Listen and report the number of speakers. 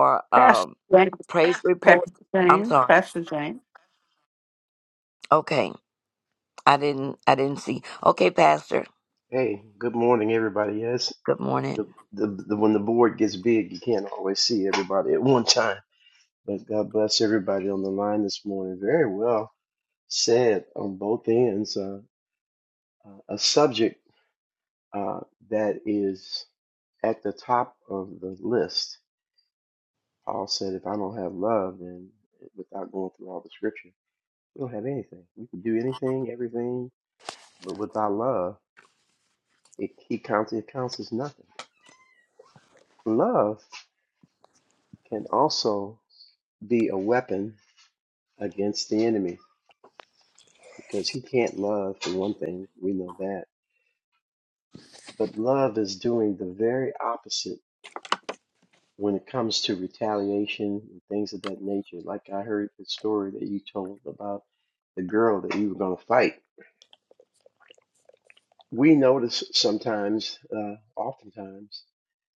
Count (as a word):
three